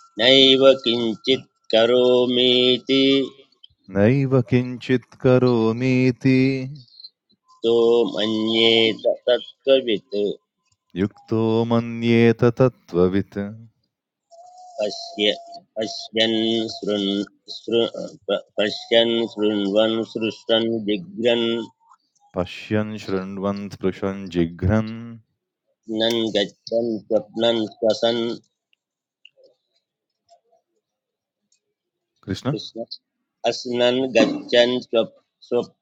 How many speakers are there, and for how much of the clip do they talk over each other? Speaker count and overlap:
2, no overlap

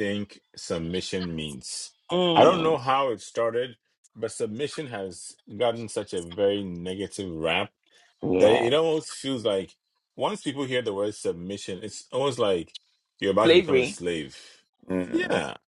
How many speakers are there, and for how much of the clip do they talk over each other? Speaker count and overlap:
2, about 9%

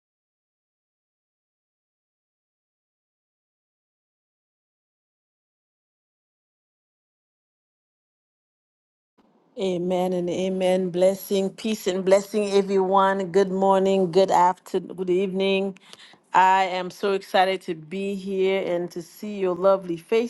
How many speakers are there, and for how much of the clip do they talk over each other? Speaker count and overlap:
1, no overlap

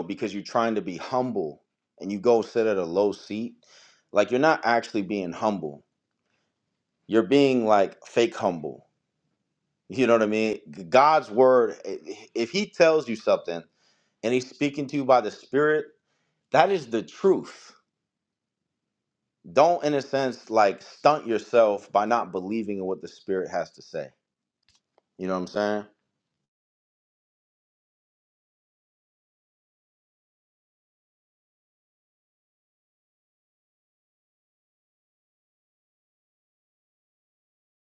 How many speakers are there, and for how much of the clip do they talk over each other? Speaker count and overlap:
1, no overlap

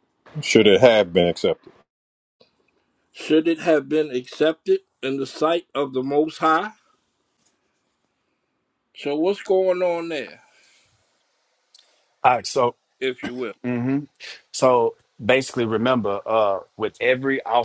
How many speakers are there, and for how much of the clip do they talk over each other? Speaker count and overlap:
3, no overlap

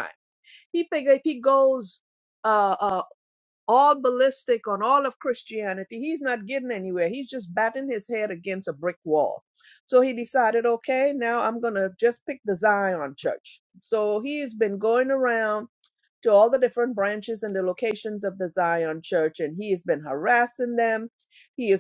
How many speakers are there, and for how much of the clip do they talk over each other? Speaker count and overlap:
1, no overlap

